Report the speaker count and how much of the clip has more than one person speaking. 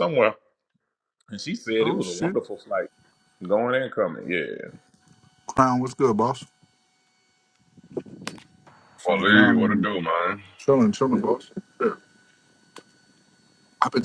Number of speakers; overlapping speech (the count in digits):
3, about 10%